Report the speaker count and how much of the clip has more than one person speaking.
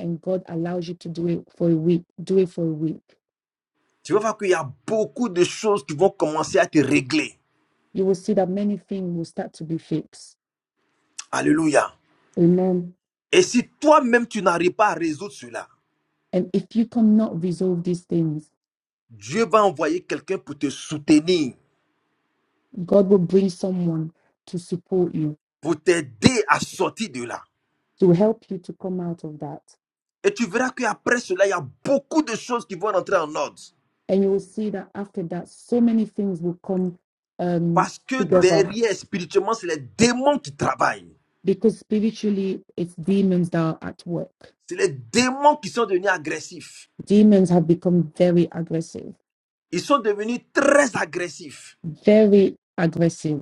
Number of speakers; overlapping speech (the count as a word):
two, about 1%